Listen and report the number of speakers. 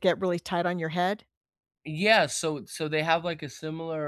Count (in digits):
2